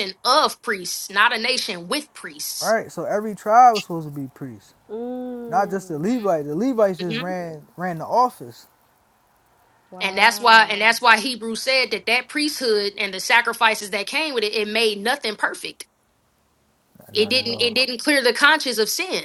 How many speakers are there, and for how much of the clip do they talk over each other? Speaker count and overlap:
three, about 11%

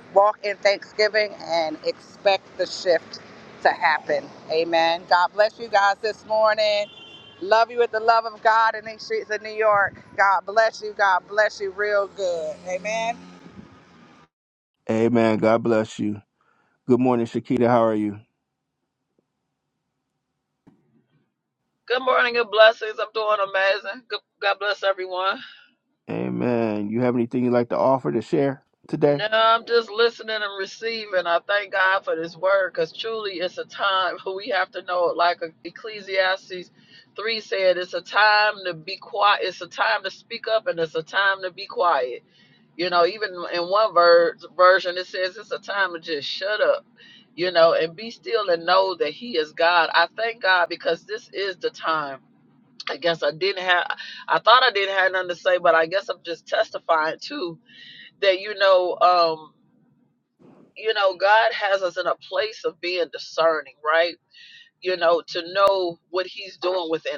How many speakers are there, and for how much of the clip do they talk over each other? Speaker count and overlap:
three, under 1%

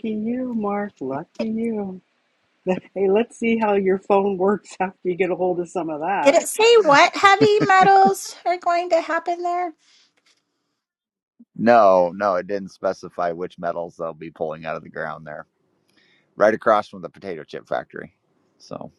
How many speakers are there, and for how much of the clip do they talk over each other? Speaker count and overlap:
three, about 1%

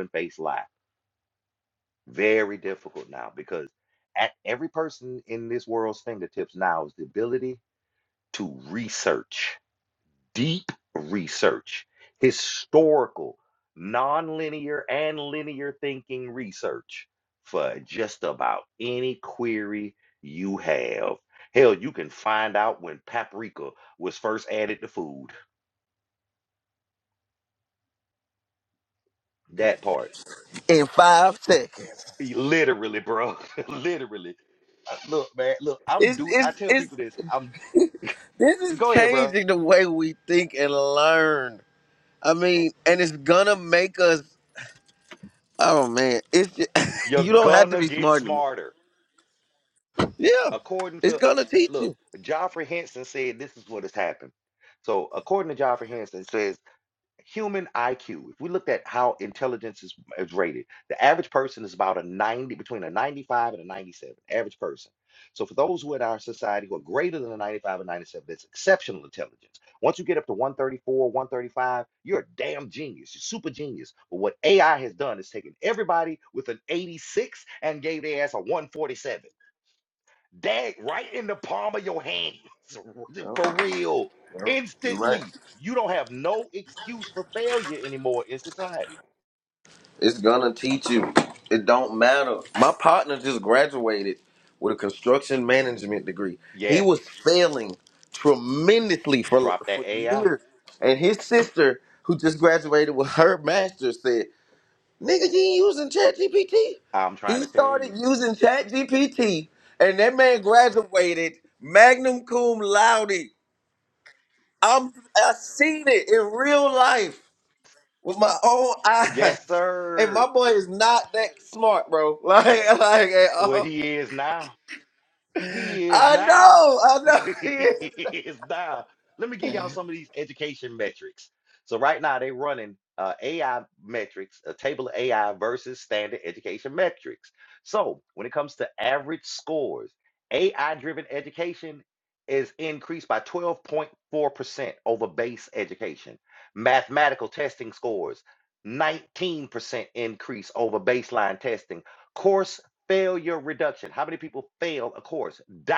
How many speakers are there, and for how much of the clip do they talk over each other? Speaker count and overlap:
two, about 6%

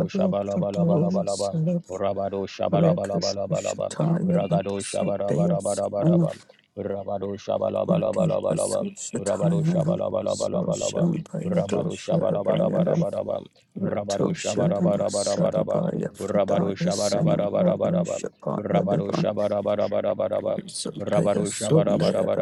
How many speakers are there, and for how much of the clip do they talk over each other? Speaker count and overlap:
two, about 55%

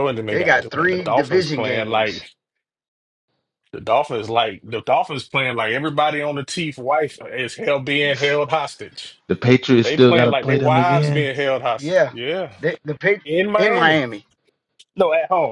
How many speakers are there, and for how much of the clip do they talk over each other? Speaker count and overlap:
three, about 26%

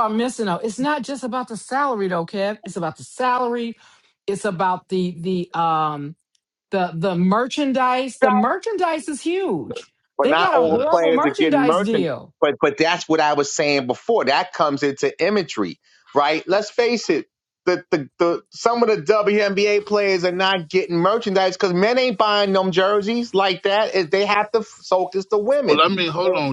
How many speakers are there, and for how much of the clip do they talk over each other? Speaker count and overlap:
three, about 8%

